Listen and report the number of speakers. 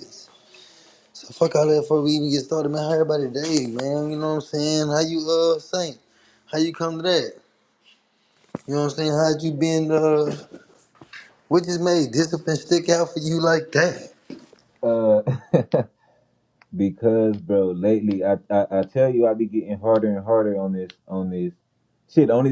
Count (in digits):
2